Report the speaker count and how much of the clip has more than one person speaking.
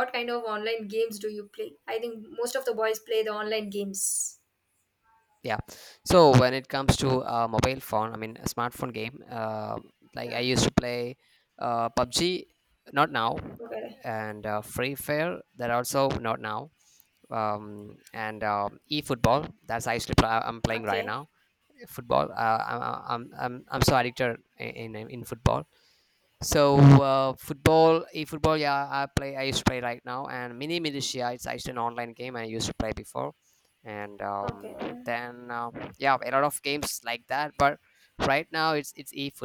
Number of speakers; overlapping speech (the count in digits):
2, about 2%